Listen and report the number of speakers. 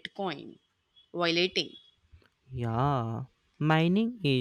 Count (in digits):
2